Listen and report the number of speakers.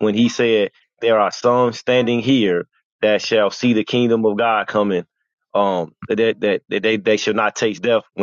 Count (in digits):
1